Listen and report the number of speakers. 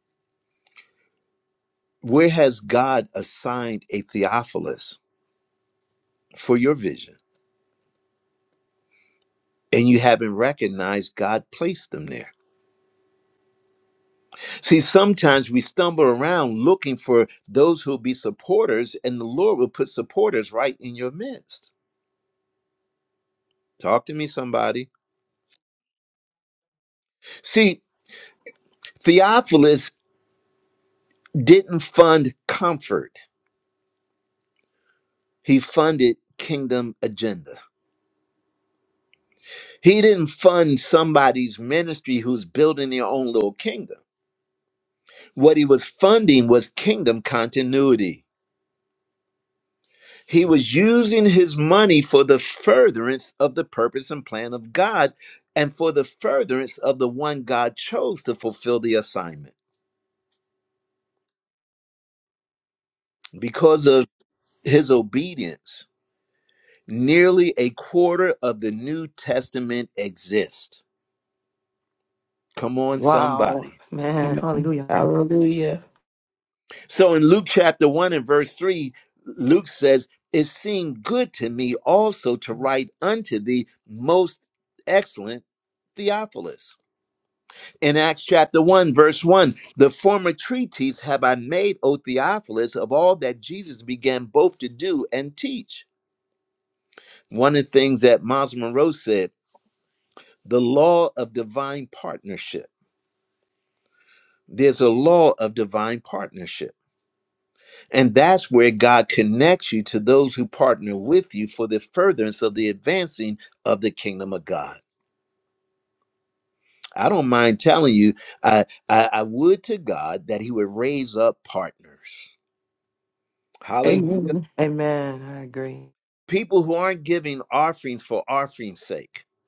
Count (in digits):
3